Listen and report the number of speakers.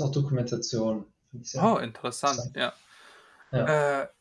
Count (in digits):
2